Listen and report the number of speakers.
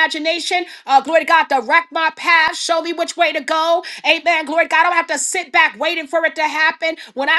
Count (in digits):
1